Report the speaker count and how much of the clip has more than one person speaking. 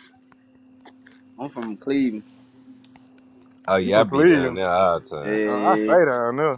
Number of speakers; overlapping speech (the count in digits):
3, about 22%